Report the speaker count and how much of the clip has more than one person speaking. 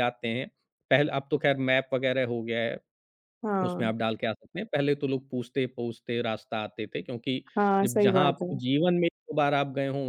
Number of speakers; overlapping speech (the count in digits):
2, about 11%